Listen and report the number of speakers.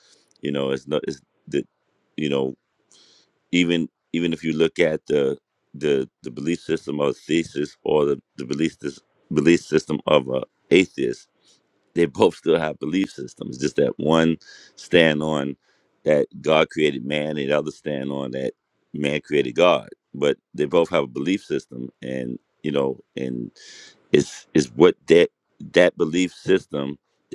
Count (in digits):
1